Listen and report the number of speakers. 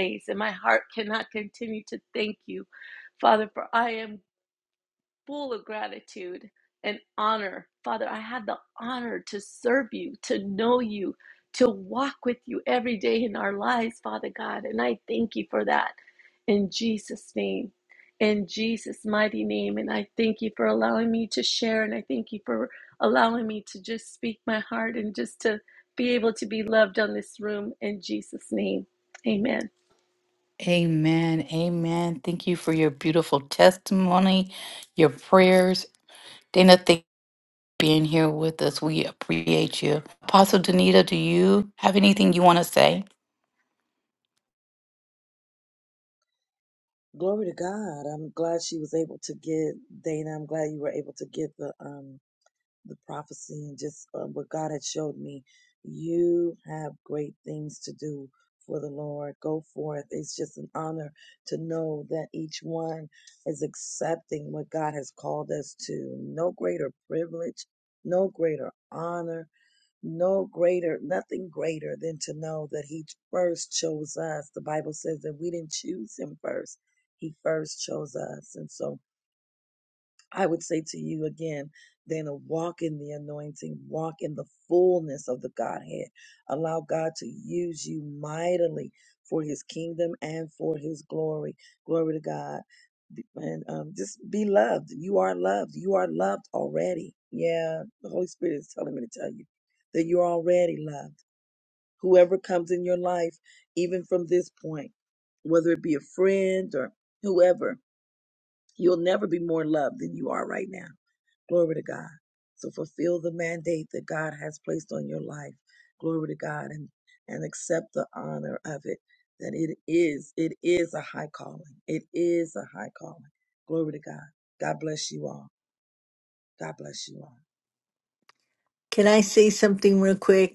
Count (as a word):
four